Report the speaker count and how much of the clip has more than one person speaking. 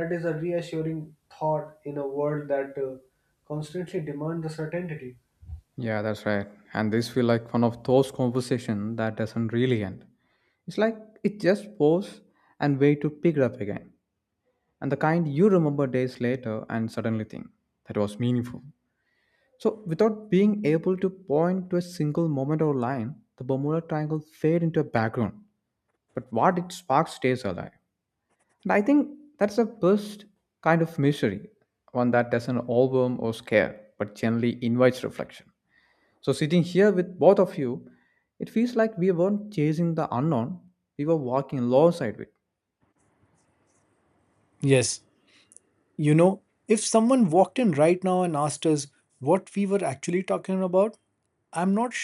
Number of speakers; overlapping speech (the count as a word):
three, no overlap